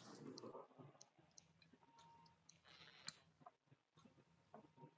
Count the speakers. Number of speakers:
0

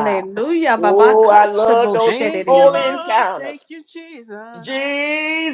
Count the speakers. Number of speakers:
3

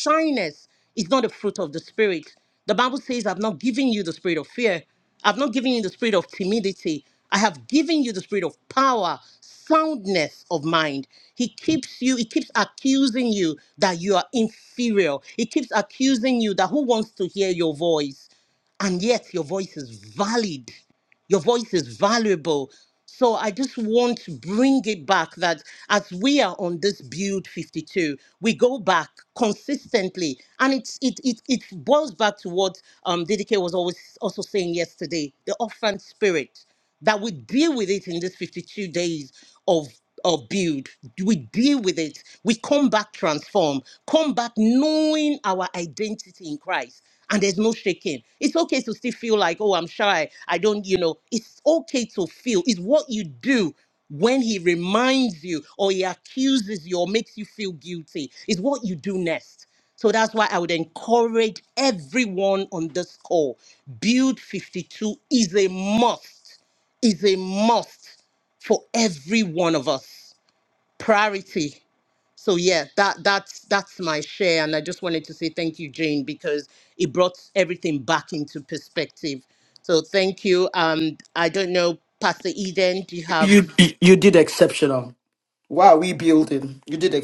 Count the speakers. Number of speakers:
2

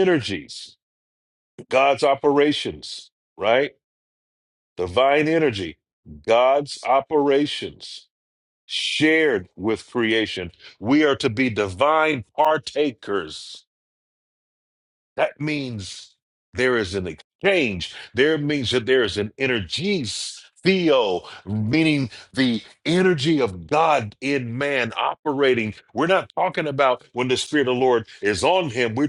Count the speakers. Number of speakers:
1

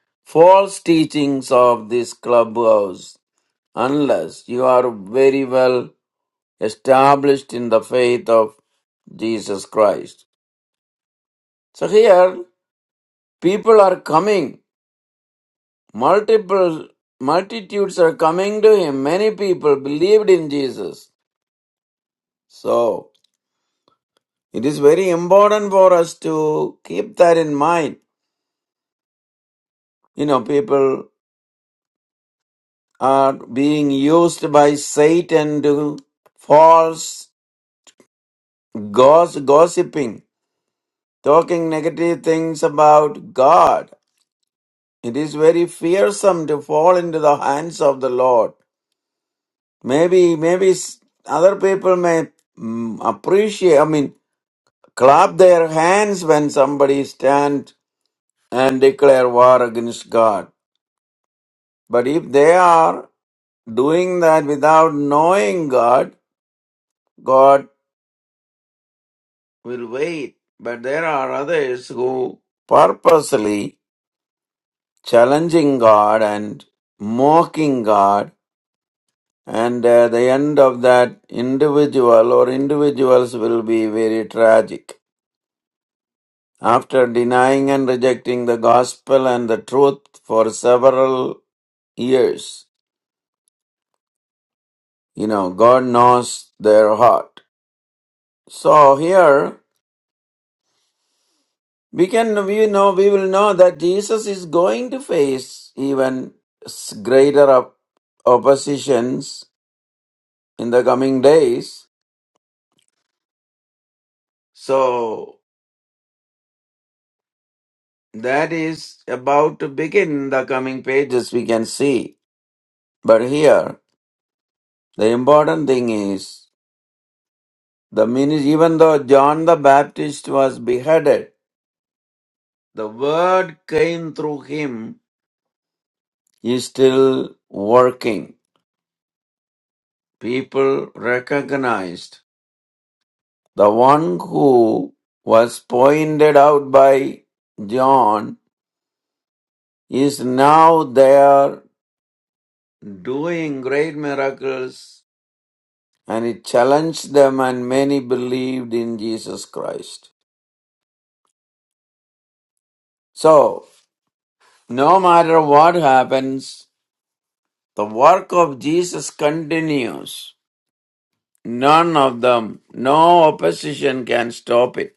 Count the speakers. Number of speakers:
1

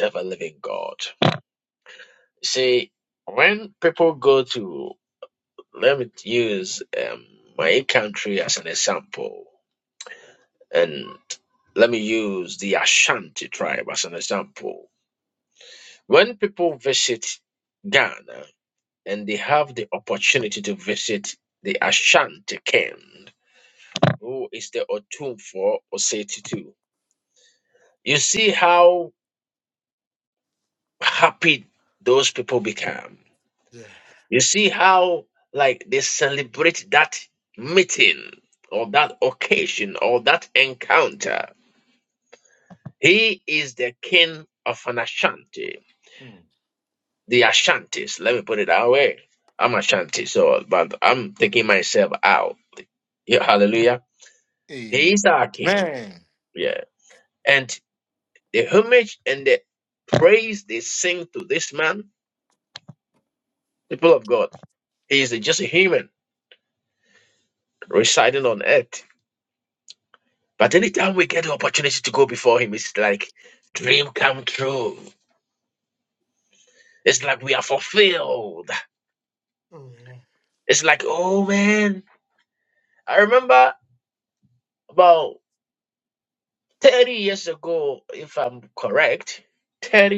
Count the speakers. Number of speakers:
2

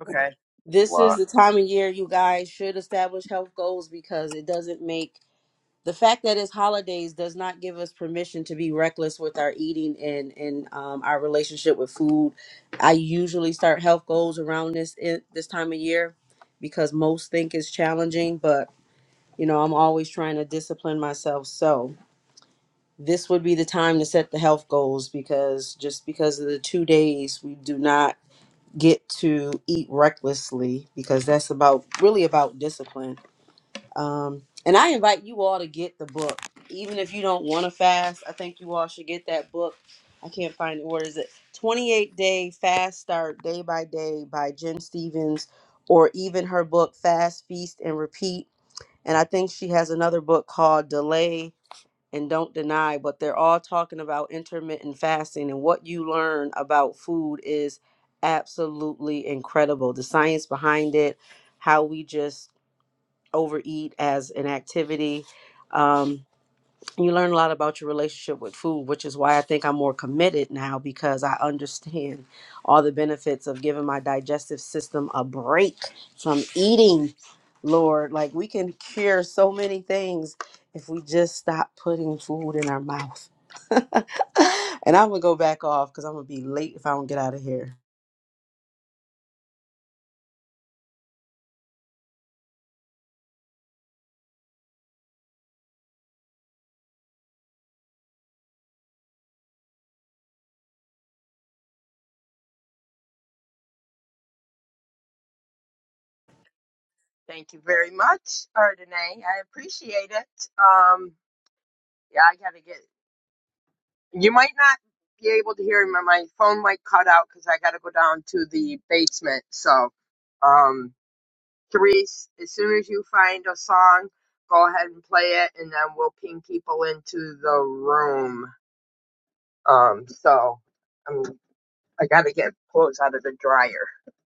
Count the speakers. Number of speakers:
2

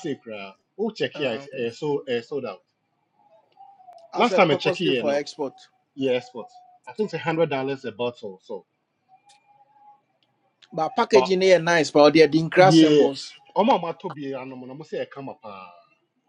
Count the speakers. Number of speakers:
2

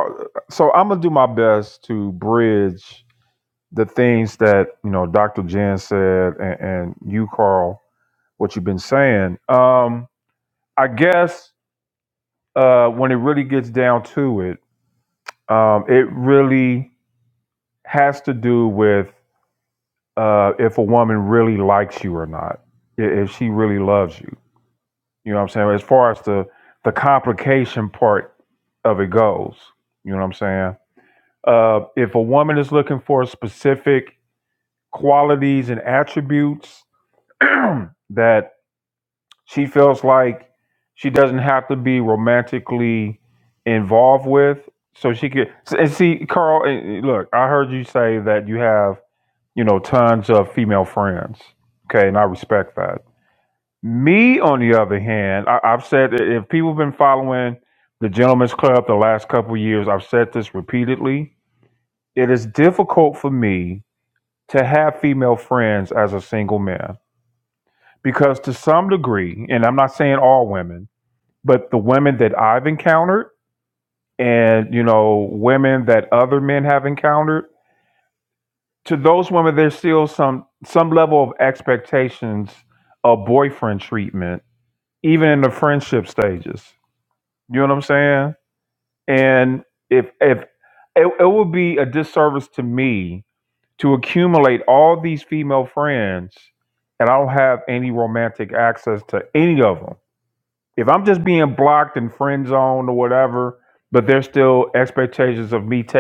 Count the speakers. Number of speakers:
1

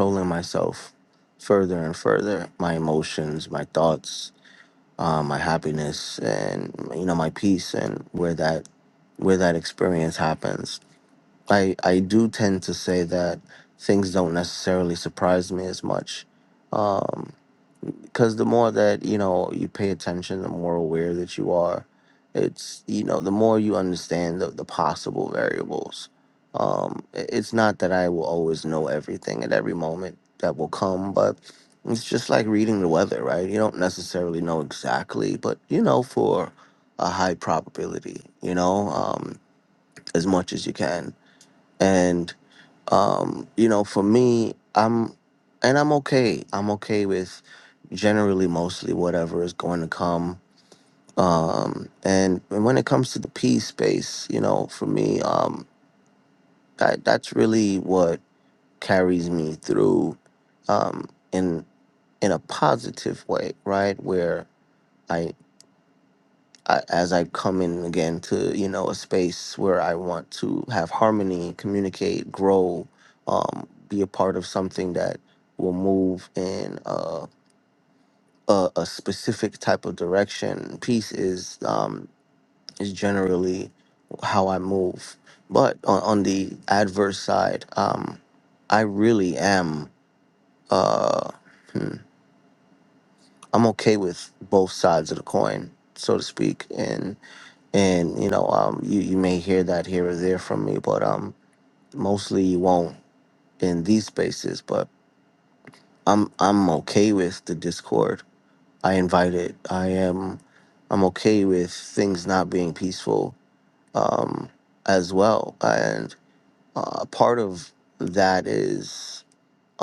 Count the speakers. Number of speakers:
1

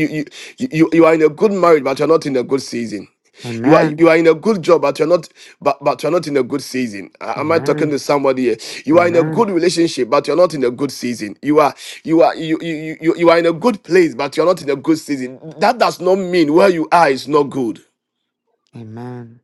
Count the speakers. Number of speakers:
2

